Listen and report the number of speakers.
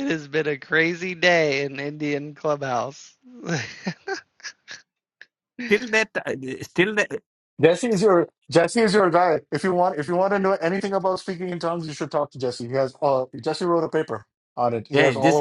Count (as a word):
three